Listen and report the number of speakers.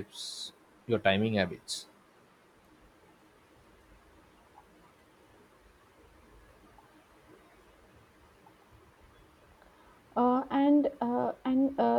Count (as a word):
two